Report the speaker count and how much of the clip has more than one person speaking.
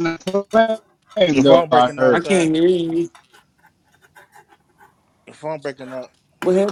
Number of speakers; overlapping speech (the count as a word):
three, about 16%